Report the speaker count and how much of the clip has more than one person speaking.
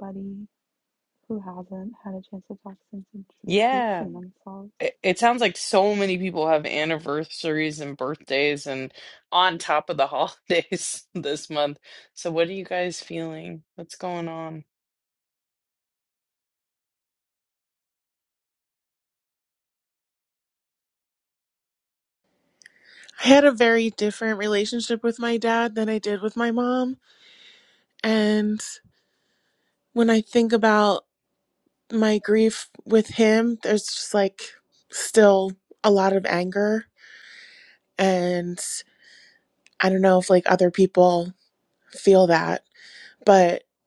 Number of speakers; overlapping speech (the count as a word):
three, about 1%